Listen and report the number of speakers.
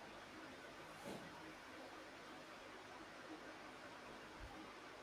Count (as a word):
zero